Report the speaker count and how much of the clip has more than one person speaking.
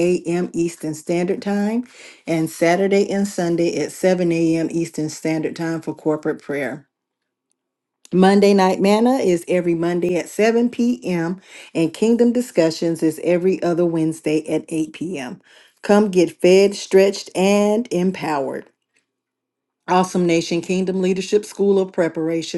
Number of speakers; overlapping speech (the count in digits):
1, no overlap